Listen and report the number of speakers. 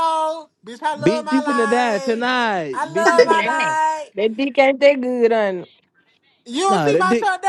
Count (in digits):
3